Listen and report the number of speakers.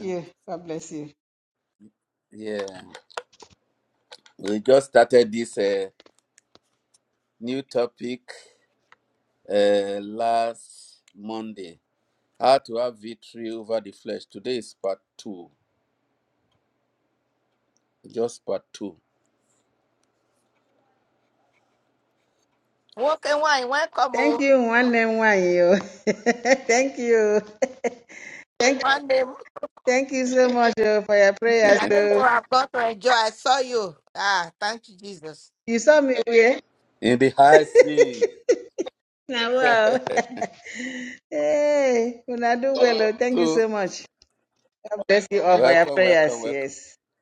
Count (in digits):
3